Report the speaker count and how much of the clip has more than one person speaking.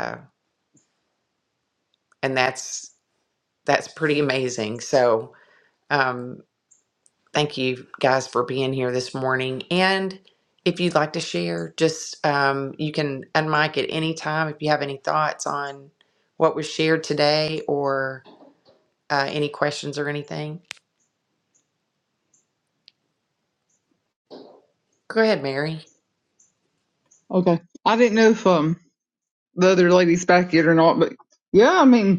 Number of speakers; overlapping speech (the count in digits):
2, no overlap